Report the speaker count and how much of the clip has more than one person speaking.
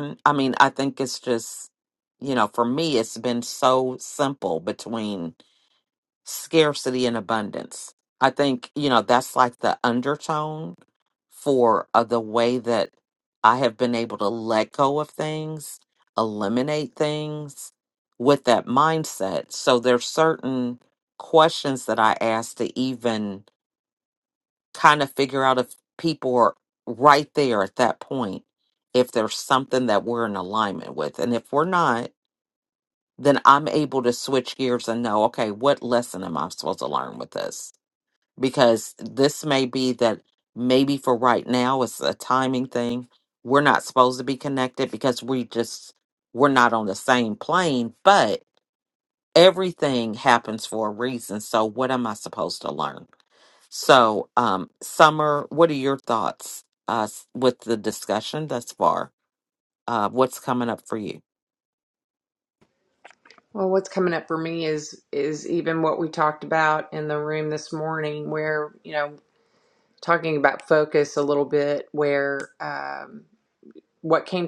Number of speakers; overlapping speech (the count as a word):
two, no overlap